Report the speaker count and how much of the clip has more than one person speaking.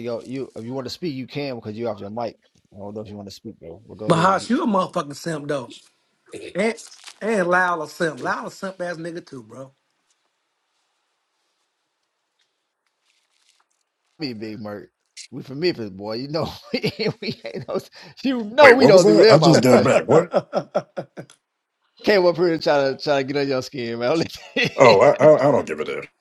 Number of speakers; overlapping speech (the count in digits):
3, about 6%